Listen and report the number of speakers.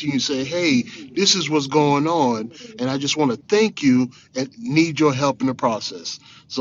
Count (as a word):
one